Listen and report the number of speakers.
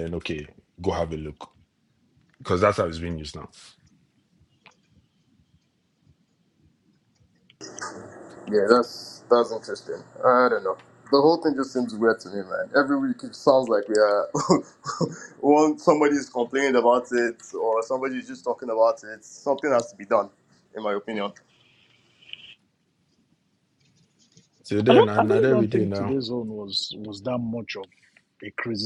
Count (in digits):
3